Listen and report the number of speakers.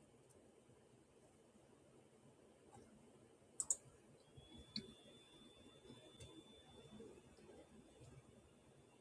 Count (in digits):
0